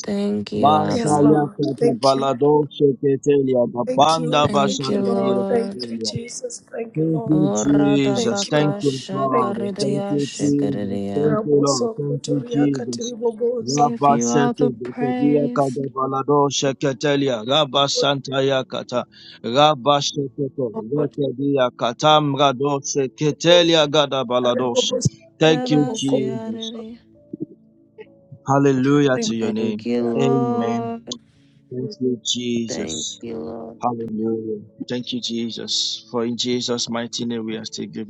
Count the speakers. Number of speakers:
three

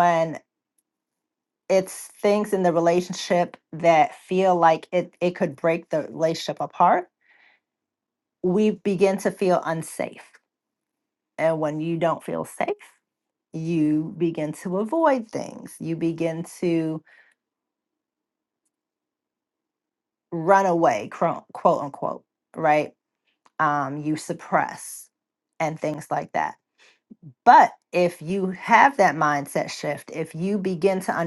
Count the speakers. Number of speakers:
one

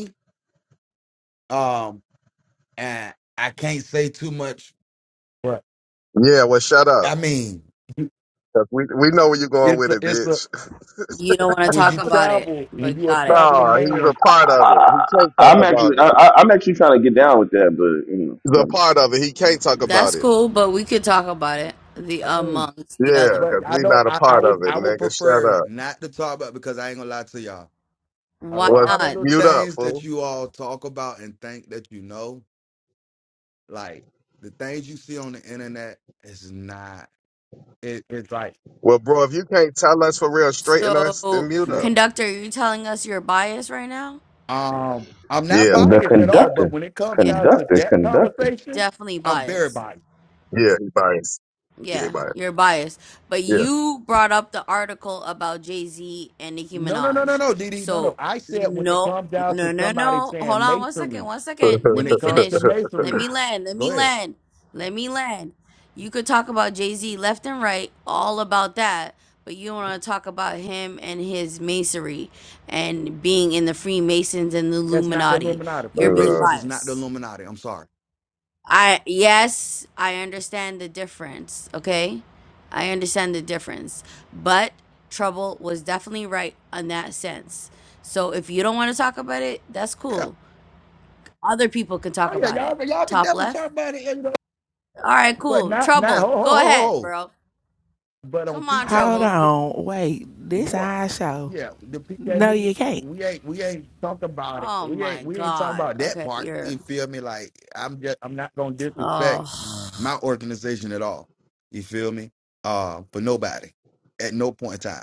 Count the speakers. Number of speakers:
five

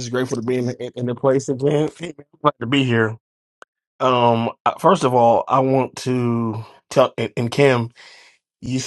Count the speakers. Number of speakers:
one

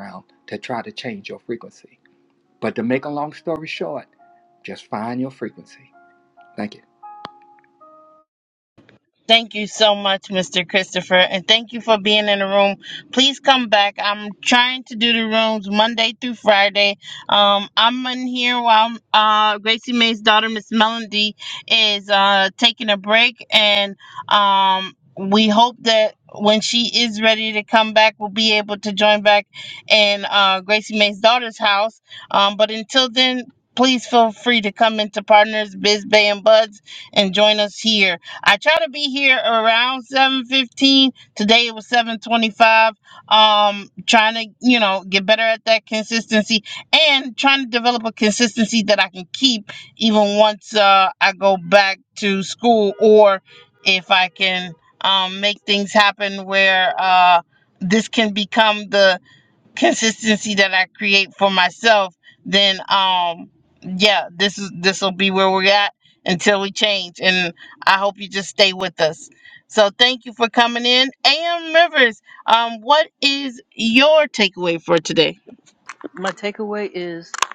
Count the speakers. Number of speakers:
three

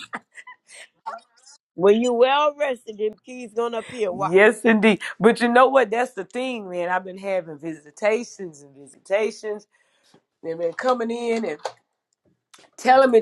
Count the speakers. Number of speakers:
two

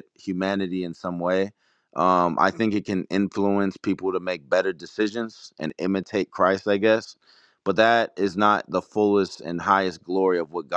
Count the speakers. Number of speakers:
one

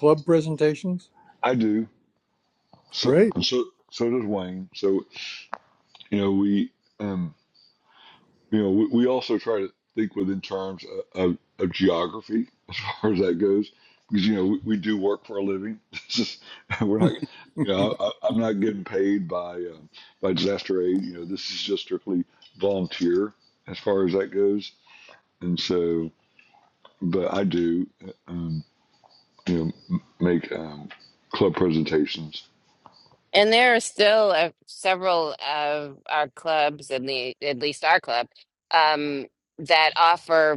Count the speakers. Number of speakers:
three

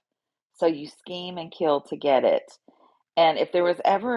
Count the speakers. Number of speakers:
one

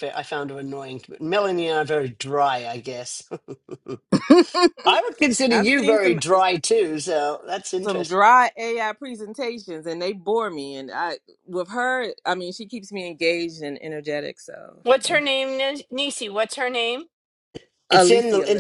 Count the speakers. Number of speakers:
three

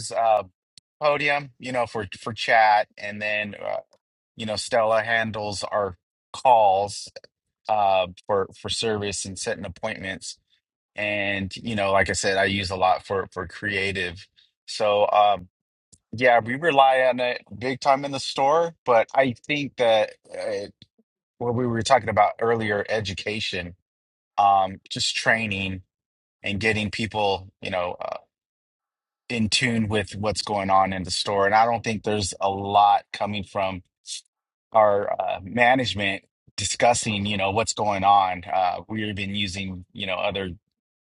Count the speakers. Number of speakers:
one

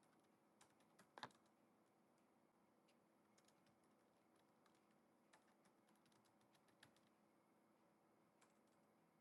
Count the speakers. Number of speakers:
zero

